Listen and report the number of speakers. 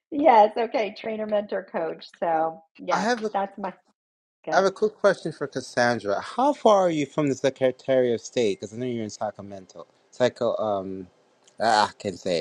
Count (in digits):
2